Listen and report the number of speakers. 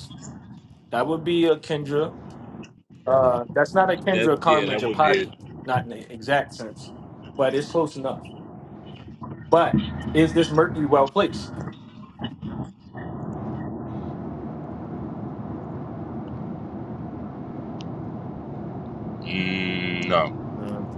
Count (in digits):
2